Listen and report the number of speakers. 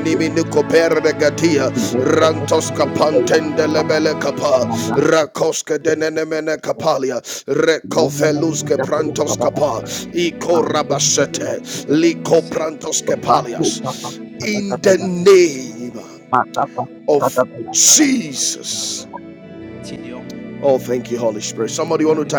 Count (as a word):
two